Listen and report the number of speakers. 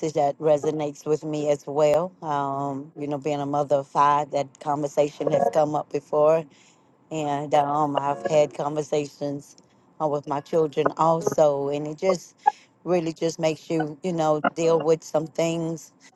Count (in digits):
1